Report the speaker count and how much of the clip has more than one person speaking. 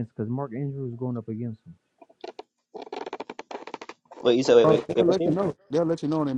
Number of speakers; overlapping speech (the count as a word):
three, about 11%